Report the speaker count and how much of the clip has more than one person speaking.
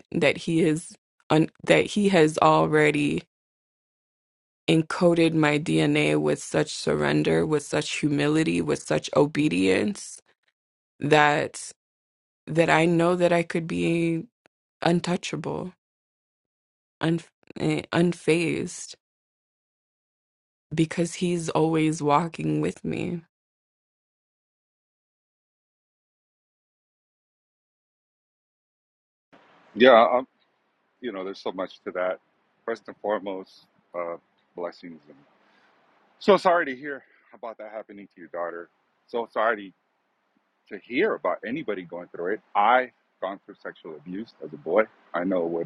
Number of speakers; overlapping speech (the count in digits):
2, no overlap